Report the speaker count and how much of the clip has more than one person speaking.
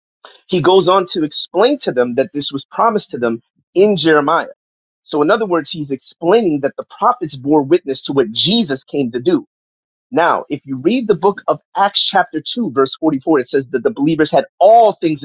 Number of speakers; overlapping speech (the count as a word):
one, no overlap